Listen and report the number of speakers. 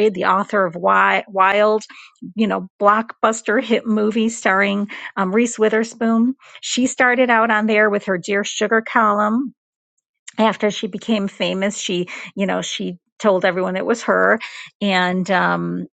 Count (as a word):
one